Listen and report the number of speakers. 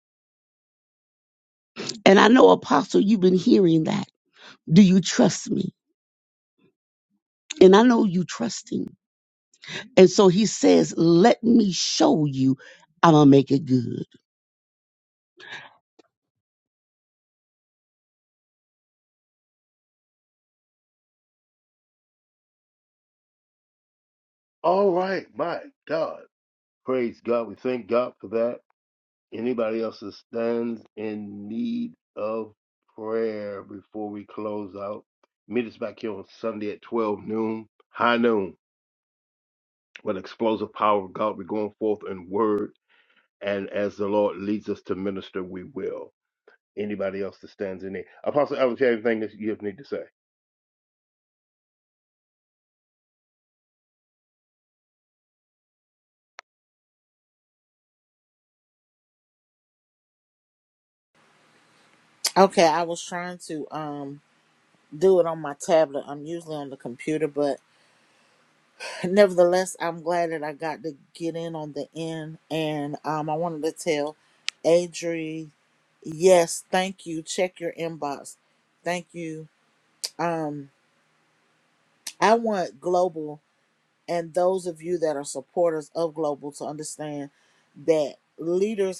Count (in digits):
3